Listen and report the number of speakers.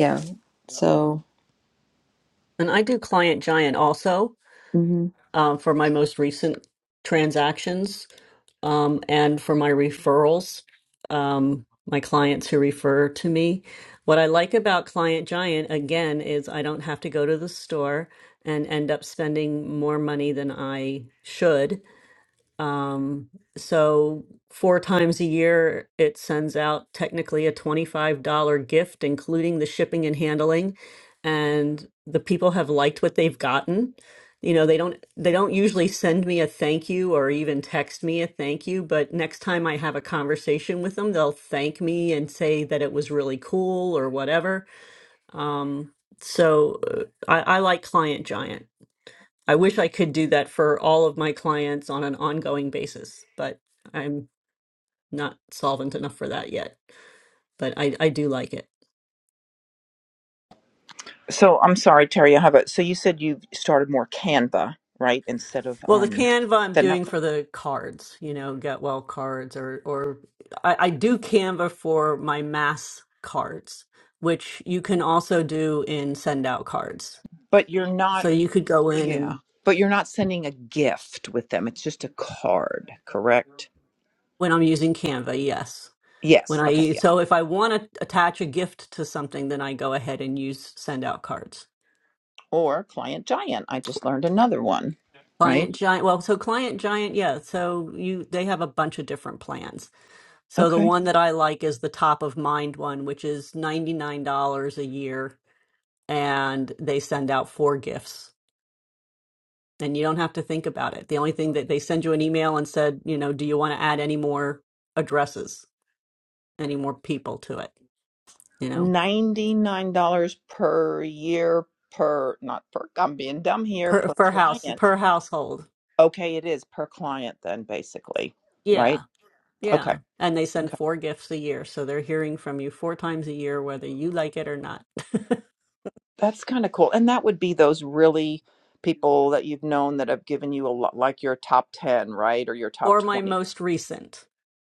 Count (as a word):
three